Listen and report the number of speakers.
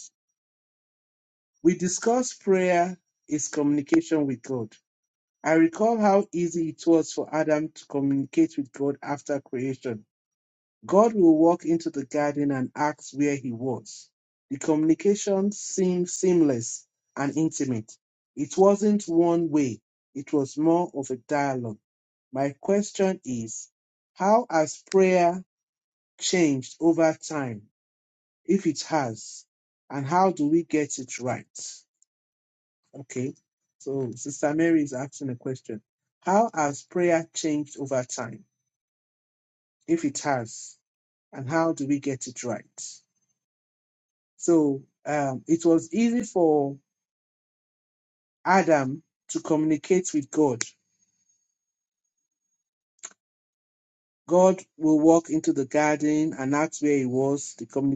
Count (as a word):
one